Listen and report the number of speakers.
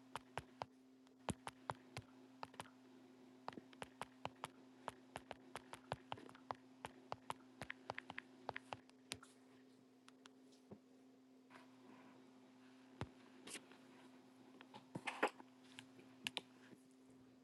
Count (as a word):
zero